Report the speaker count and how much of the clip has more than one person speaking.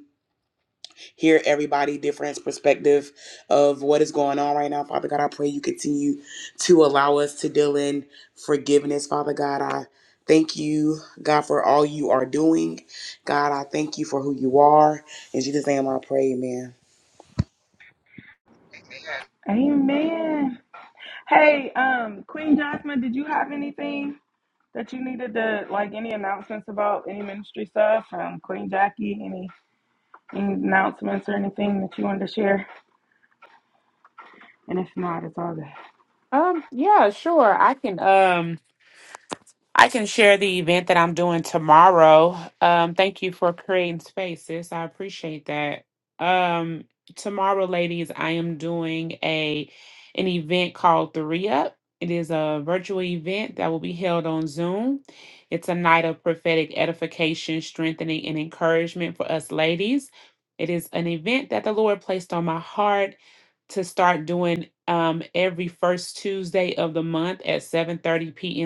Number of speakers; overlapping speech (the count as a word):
three, no overlap